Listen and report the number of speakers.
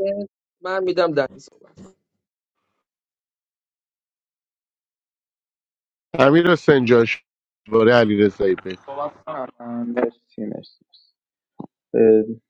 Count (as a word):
three